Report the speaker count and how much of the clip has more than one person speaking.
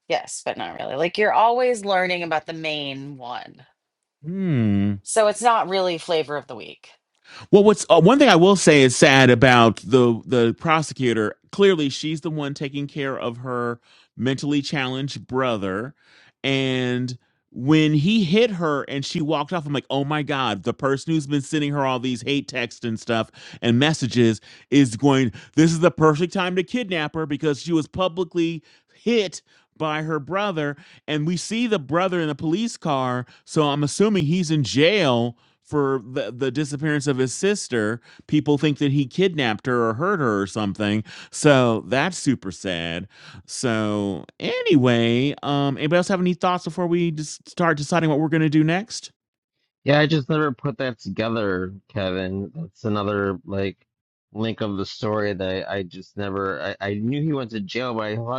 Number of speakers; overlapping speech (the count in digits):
3, no overlap